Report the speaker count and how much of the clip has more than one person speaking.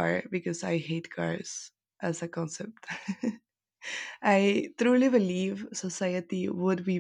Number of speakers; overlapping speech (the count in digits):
1, no overlap